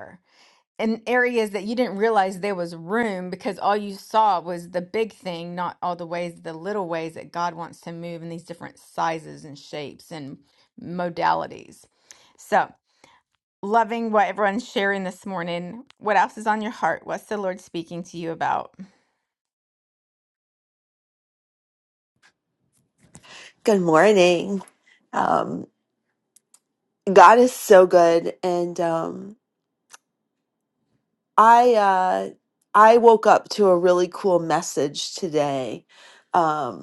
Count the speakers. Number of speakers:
2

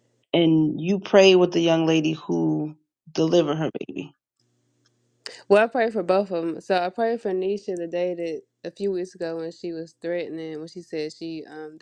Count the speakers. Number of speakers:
2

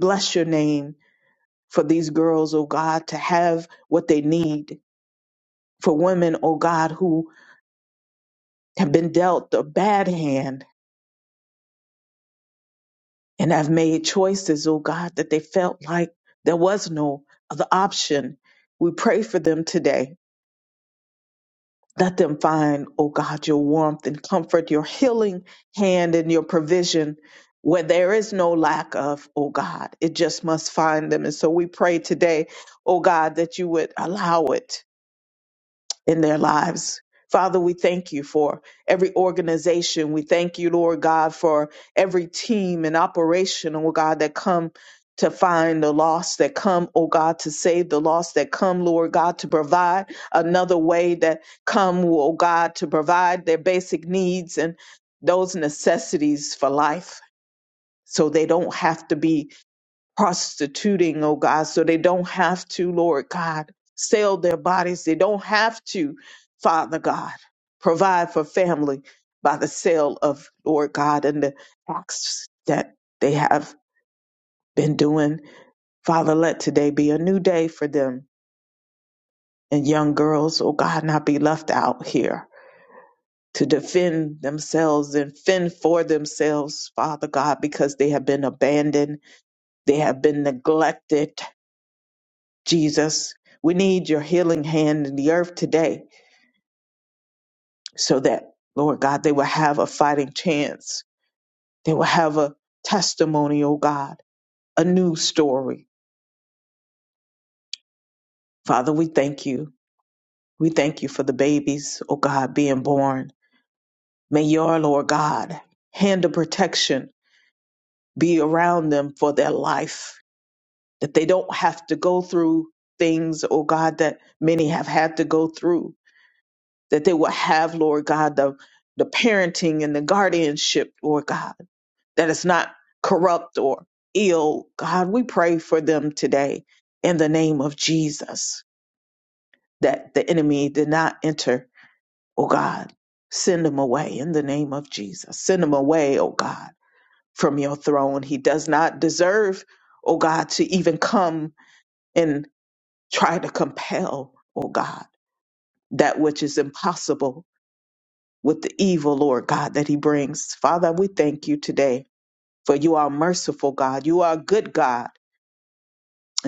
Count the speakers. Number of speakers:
1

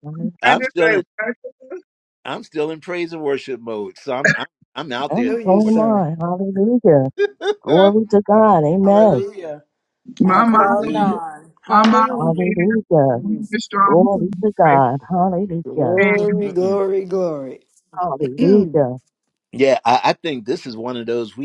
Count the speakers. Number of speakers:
5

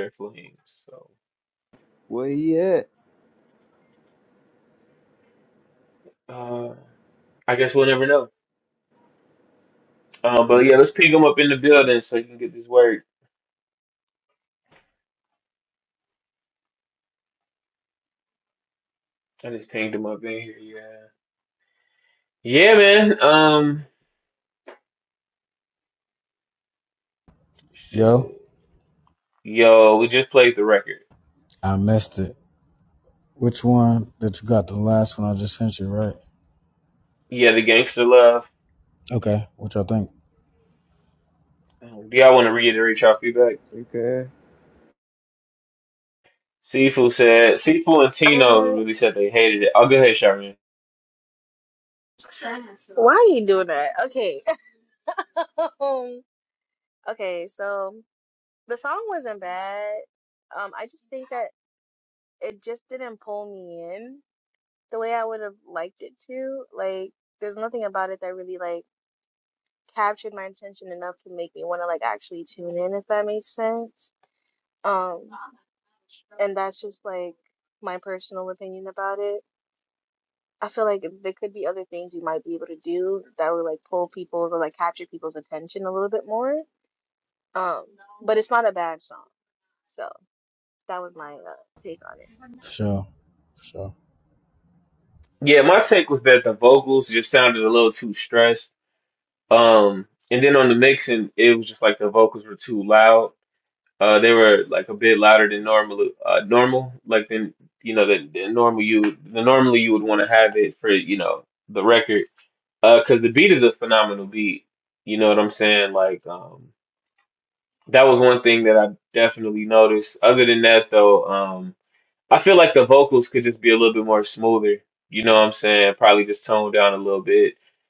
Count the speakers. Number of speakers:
4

